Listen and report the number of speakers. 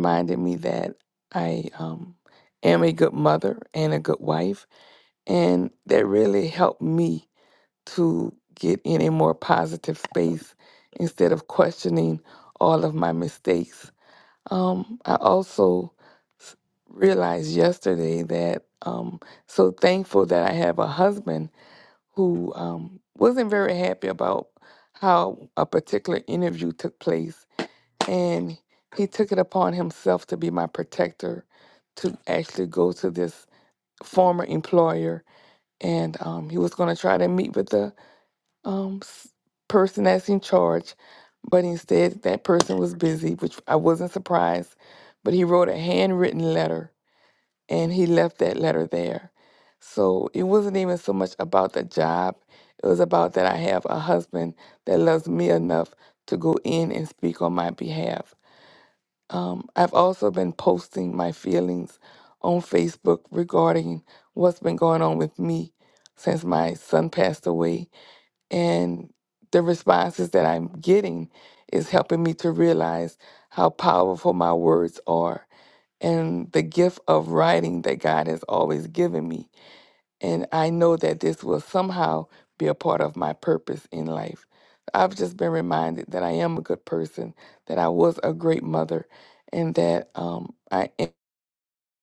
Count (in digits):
1